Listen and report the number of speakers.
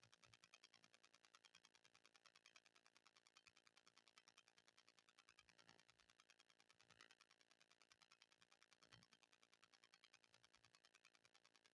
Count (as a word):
zero